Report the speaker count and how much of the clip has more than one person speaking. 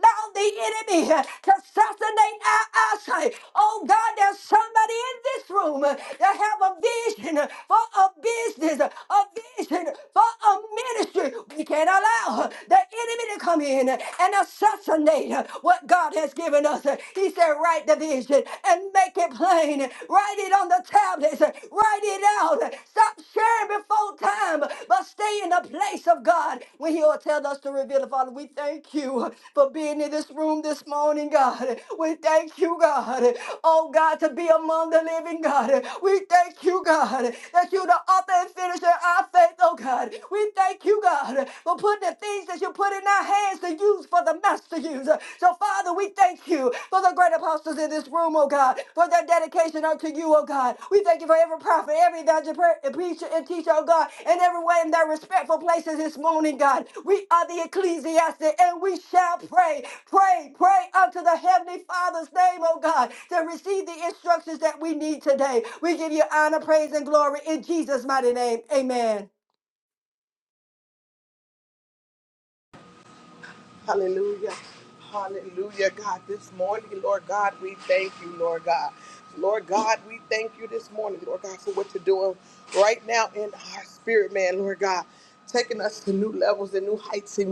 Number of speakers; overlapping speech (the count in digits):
2, no overlap